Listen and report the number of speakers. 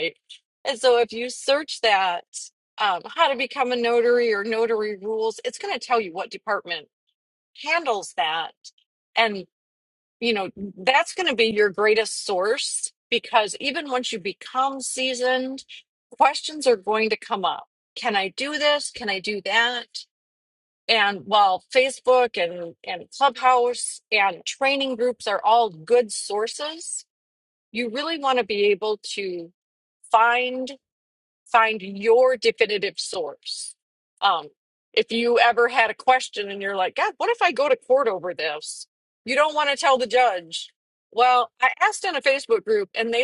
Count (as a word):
one